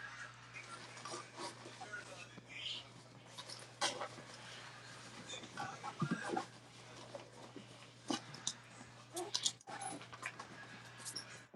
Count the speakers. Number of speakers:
0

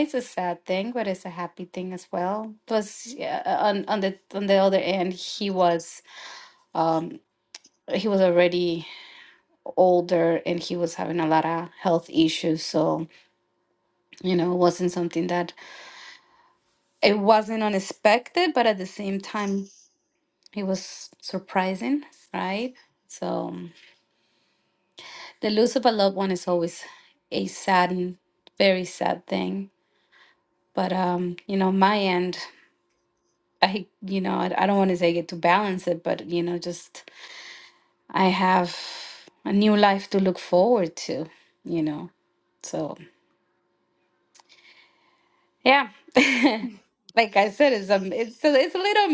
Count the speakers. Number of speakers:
1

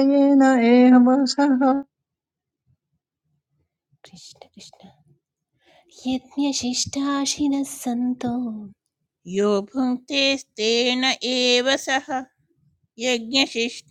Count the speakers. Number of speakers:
3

